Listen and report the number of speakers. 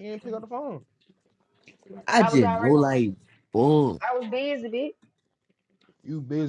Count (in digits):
3